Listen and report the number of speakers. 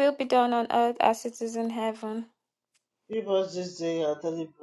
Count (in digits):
2